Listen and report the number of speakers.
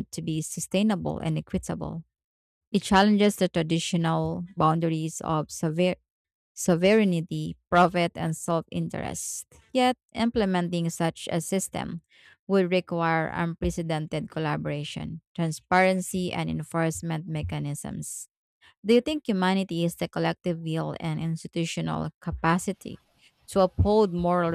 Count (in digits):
1